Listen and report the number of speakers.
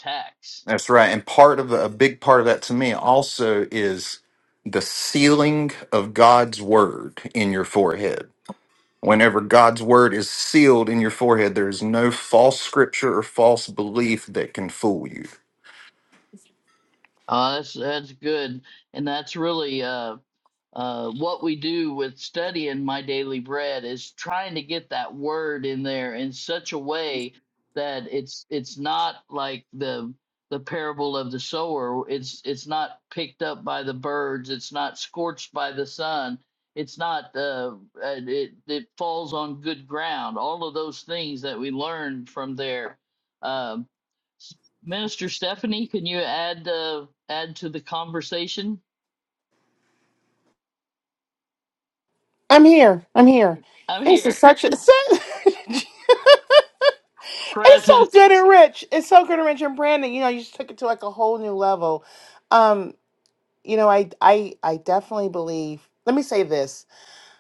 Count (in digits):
3